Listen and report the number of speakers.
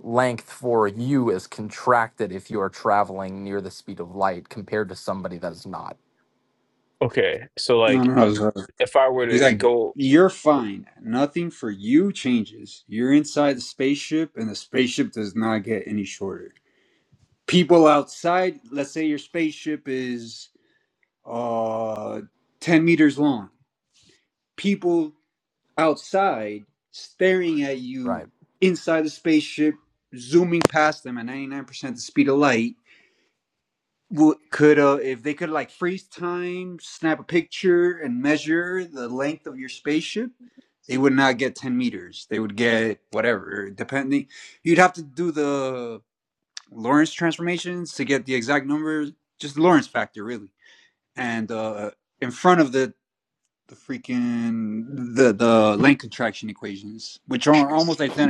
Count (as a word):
three